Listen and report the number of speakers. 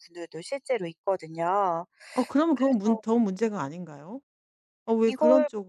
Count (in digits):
2